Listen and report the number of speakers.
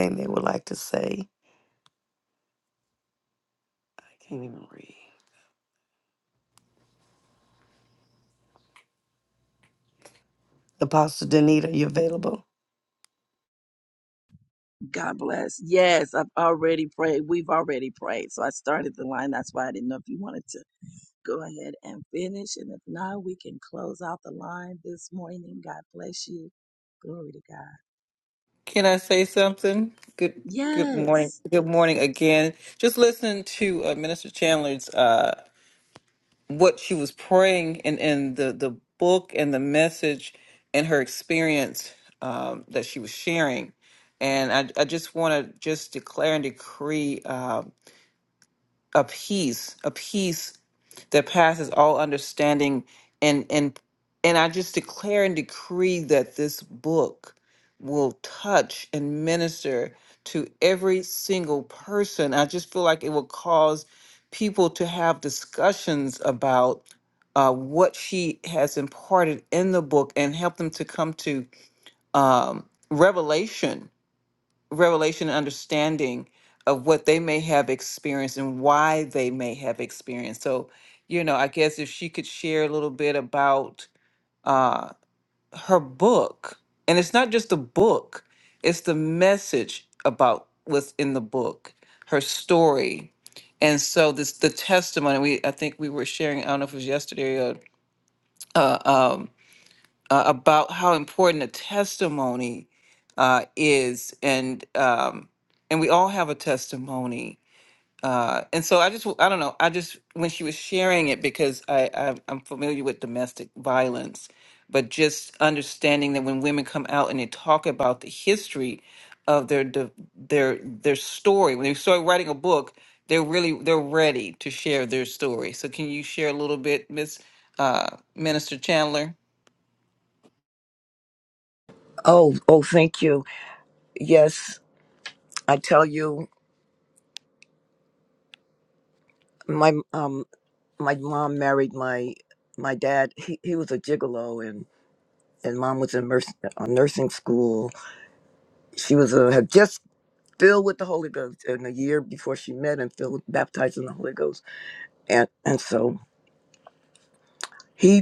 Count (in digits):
4